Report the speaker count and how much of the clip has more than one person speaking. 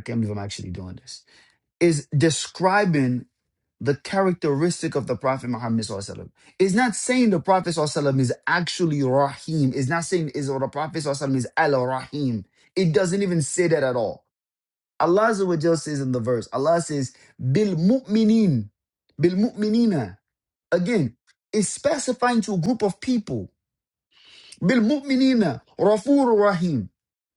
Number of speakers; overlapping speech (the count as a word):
one, no overlap